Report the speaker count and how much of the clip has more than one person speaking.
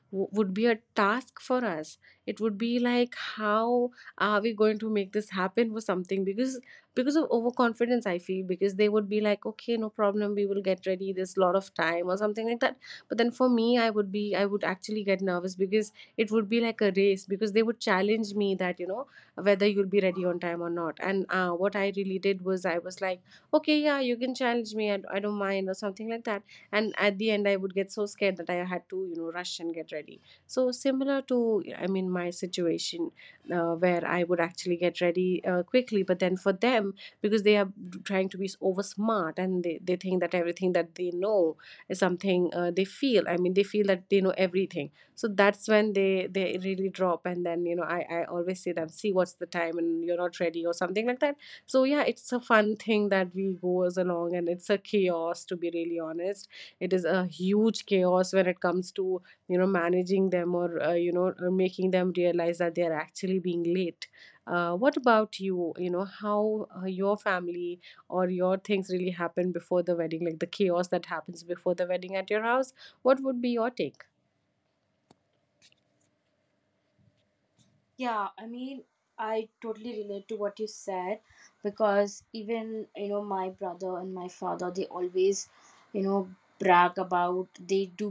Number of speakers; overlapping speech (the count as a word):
two, no overlap